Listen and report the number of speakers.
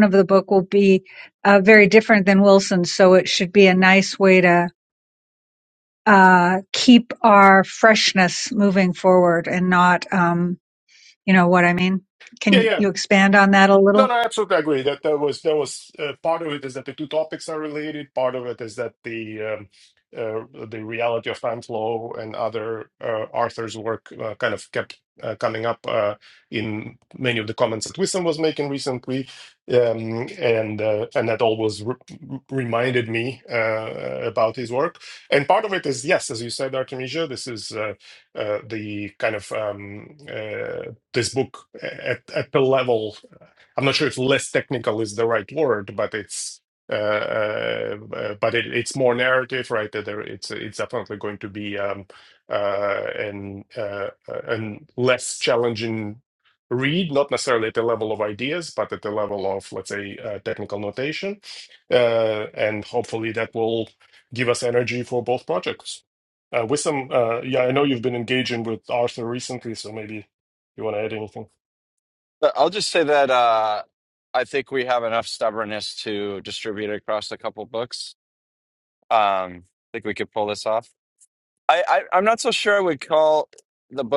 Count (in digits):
3